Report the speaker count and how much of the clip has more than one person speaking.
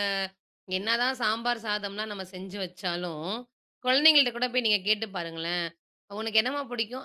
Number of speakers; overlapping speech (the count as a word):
one, no overlap